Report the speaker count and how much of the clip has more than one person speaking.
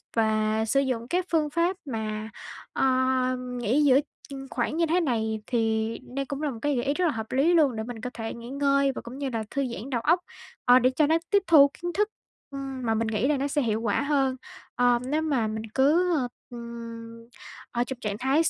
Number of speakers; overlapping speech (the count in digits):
1, no overlap